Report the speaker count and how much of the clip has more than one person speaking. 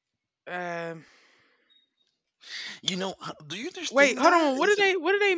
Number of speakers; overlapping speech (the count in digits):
2, about 13%